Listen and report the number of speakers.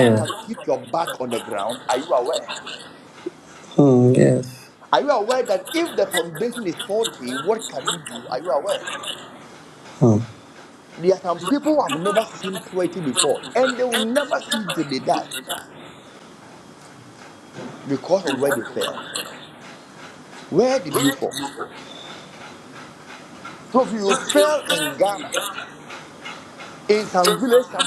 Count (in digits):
2